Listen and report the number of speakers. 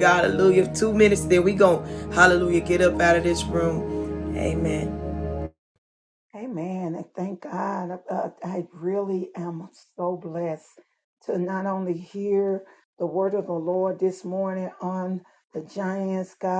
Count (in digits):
2